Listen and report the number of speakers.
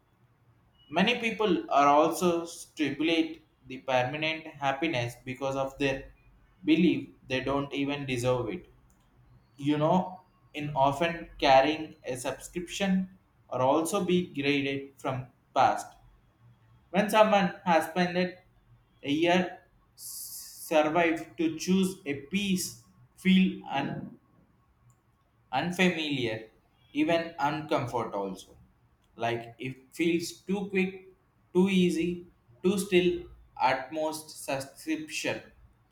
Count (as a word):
one